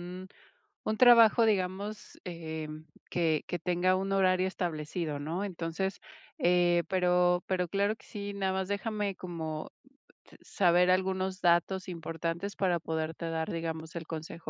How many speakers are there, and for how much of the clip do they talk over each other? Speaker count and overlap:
one, no overlap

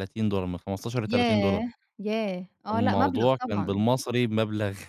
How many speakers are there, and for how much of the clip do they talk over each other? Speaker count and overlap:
two, about 34%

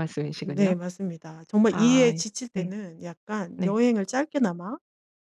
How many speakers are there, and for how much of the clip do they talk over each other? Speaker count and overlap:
two, about 21%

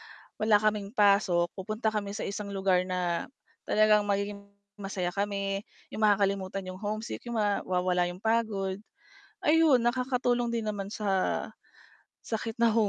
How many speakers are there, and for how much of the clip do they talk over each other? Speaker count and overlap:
one, no overlap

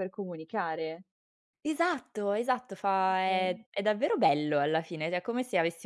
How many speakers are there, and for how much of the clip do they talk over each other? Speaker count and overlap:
two, about 4%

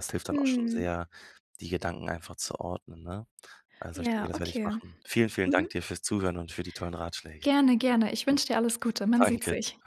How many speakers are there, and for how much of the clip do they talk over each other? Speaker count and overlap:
two, about 19%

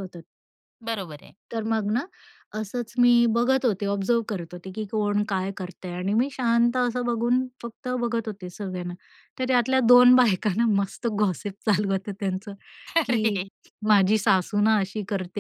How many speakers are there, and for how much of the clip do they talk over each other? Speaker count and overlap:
two, about 2%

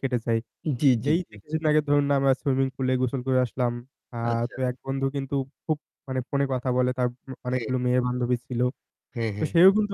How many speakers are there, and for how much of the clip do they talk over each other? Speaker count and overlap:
two, about 10%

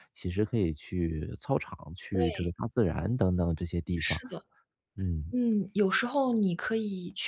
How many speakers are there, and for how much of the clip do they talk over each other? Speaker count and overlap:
two, about 9%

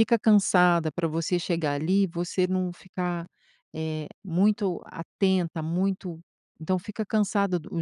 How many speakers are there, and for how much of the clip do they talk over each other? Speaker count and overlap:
one, no overlap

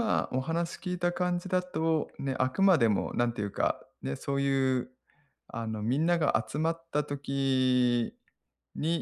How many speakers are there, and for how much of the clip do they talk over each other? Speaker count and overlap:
one, no overlap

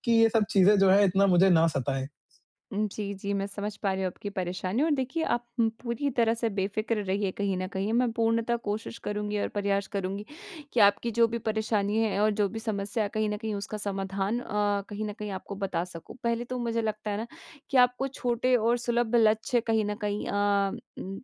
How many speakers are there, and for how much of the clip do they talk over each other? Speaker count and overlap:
two, no overlap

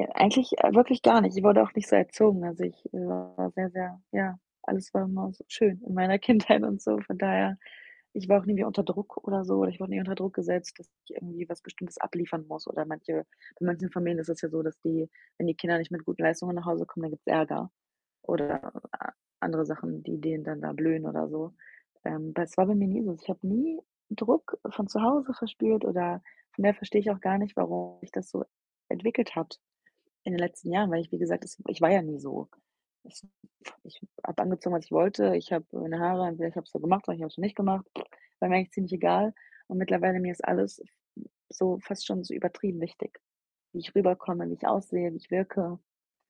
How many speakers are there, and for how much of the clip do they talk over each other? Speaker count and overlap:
one, no overlap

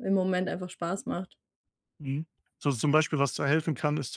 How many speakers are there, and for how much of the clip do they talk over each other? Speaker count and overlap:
two, no overlap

